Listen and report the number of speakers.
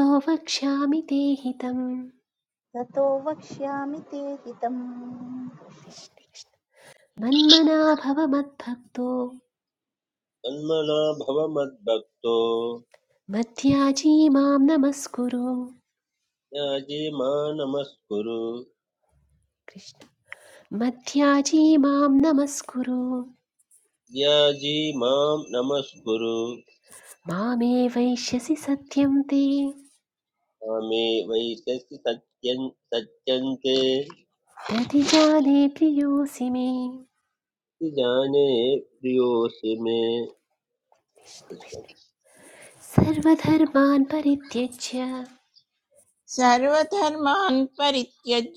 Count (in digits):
4